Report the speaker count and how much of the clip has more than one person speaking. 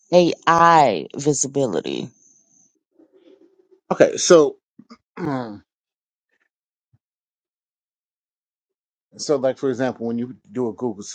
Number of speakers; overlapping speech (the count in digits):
2, no overlap